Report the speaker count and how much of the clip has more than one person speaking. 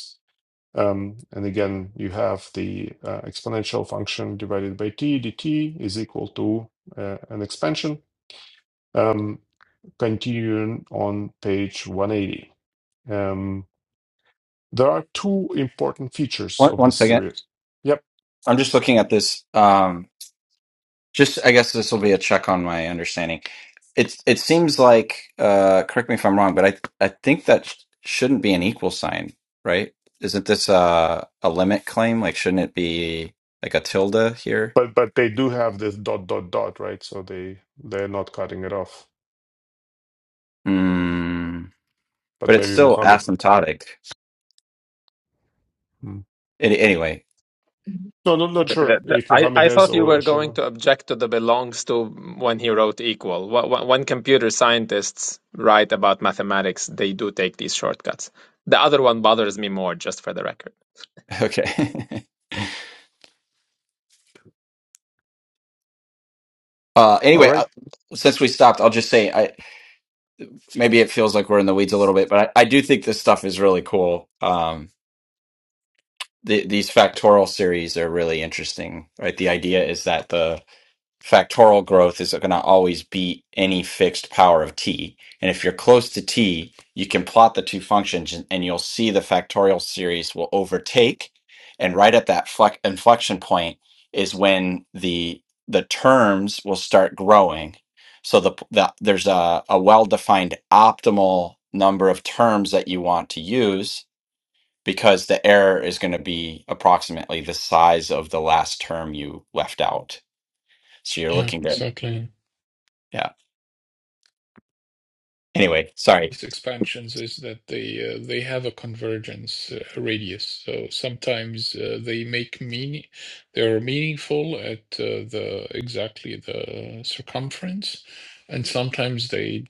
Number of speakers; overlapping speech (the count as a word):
four, about 3%